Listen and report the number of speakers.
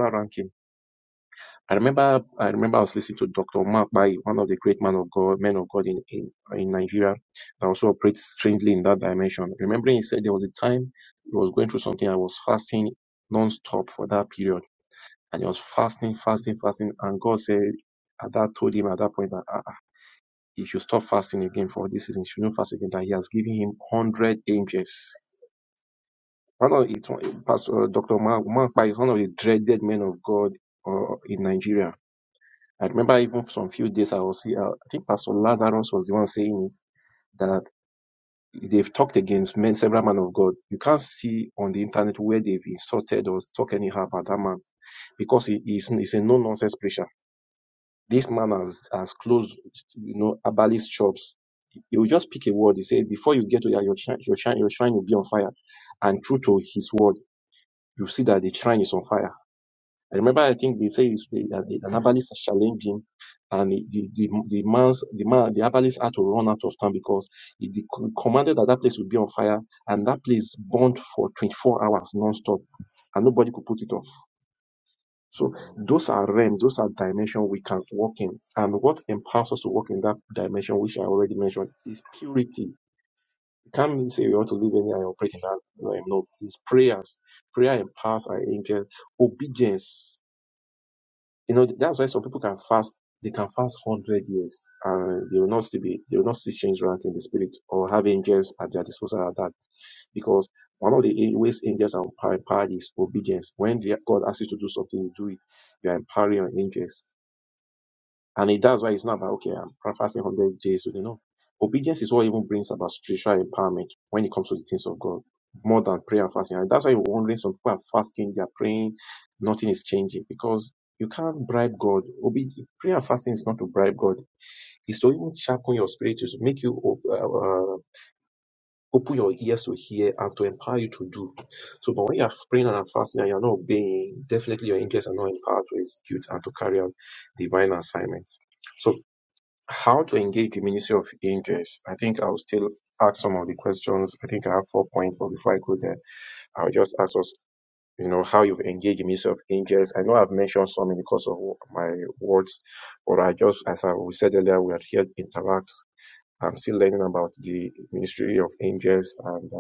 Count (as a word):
one